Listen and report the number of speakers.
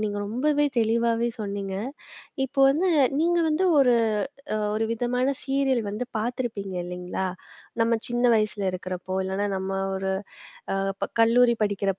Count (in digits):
1